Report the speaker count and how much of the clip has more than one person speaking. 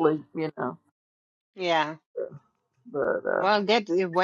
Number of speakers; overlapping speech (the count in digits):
2, about 2%